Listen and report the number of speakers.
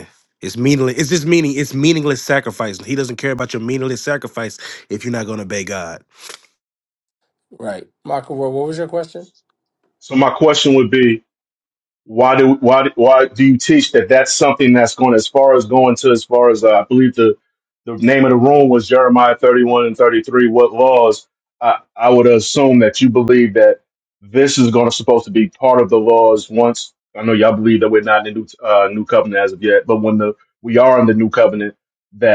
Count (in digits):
3